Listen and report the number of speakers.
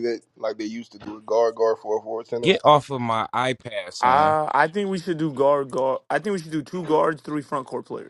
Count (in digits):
3